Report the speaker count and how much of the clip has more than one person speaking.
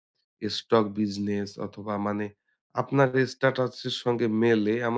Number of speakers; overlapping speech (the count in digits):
1, no overlap